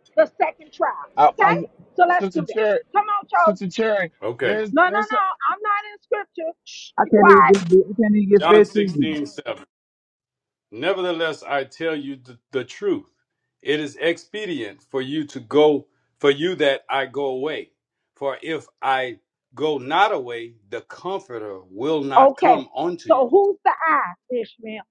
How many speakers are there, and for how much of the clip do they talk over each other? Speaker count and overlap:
4, about 14%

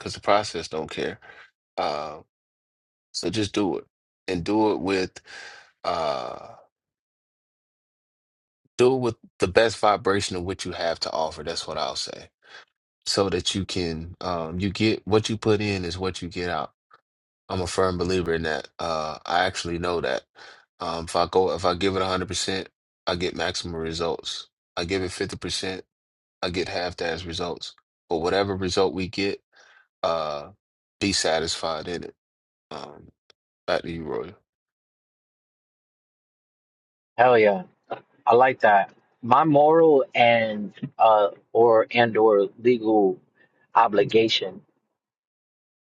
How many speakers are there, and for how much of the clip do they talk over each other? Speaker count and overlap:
2, no overlap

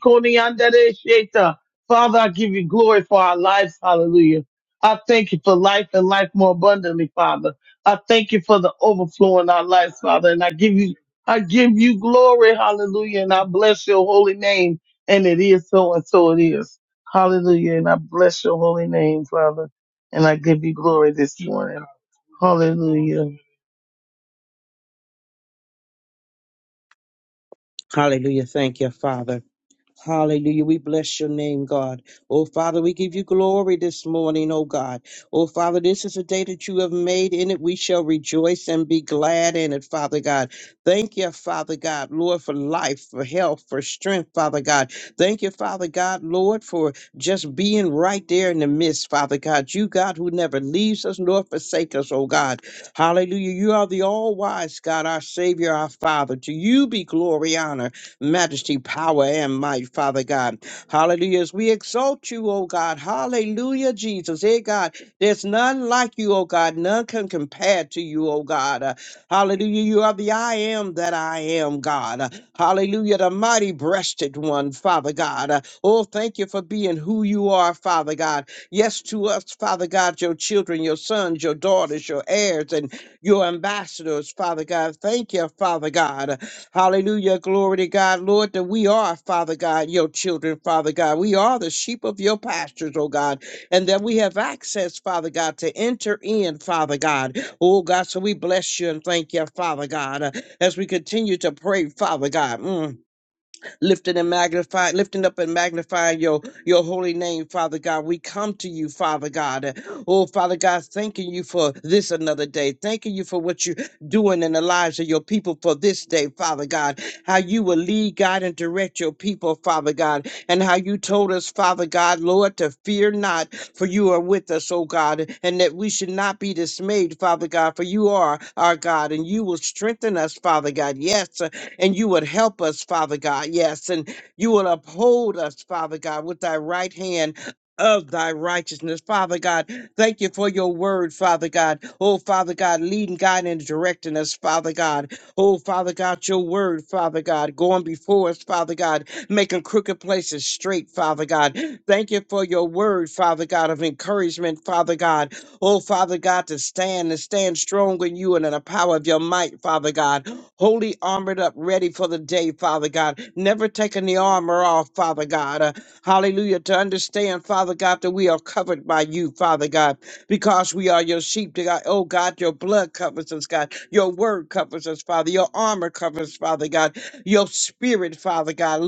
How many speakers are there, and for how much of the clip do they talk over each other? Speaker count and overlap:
2, no overlap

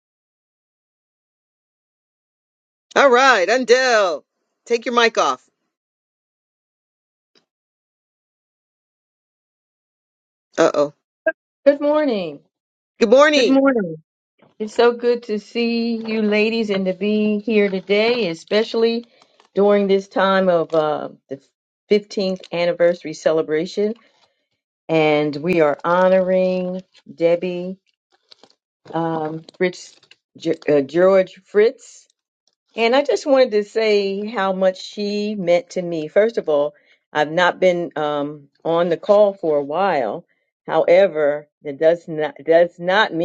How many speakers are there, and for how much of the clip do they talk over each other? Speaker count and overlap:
2, about 1%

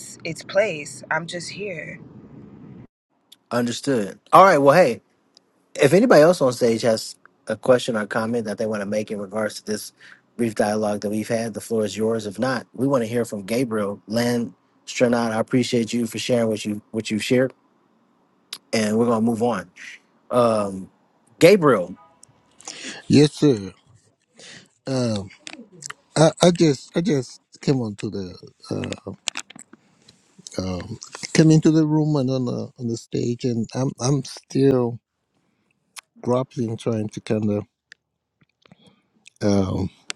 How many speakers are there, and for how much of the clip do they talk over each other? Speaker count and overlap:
3, no overlap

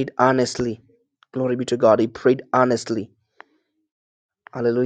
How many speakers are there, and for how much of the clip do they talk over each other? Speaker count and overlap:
1, no overlap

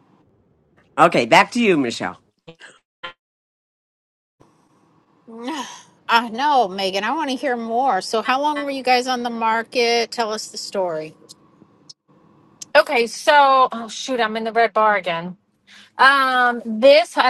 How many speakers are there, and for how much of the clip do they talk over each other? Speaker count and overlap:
3, no overlap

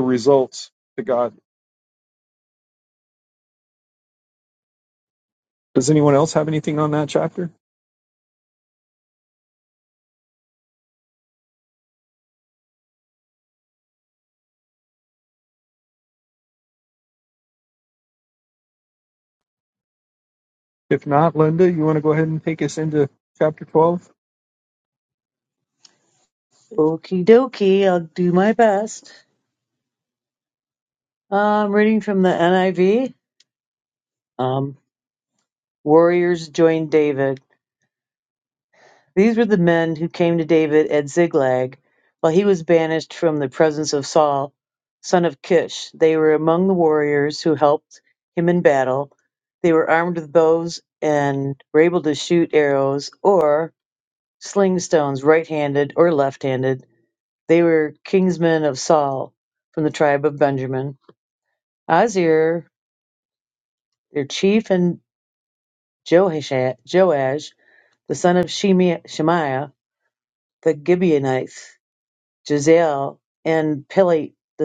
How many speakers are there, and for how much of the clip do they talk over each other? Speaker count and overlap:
2, no overlap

